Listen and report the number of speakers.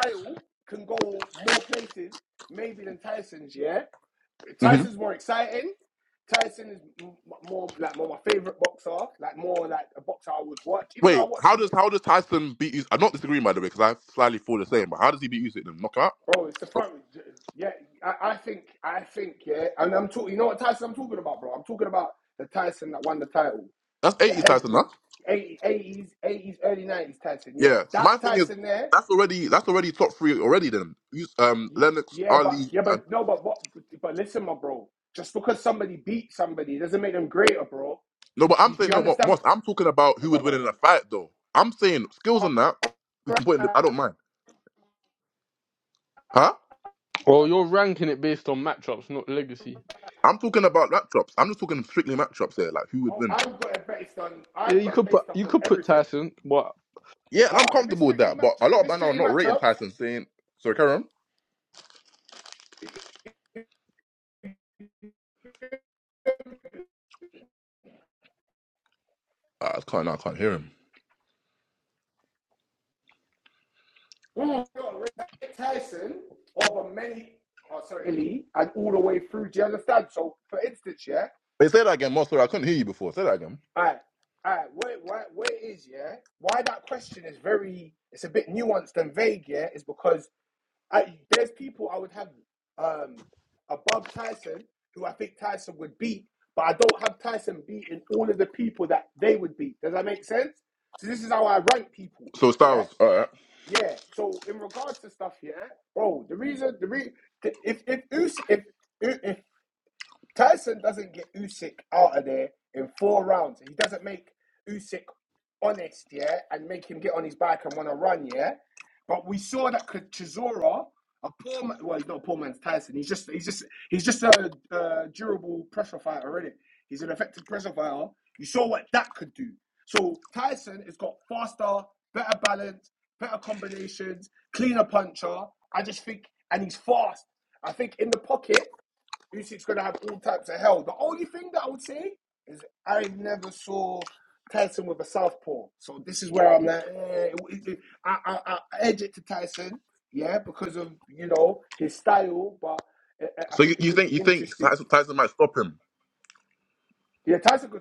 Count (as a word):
three